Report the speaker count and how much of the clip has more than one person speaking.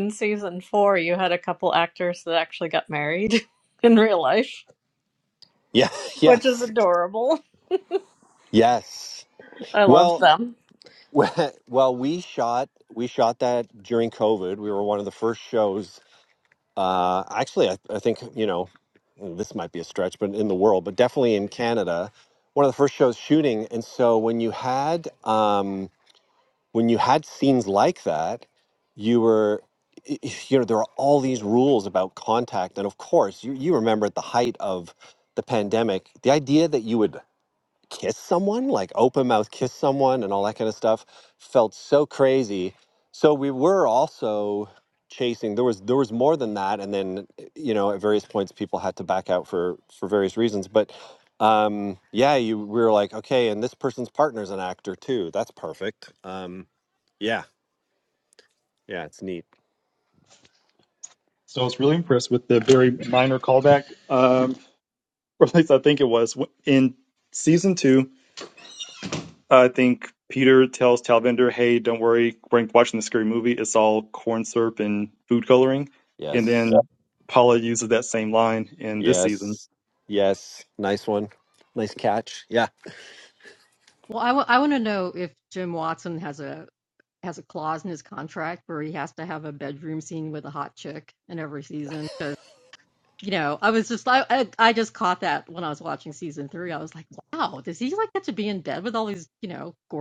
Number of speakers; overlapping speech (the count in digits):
4, about 1%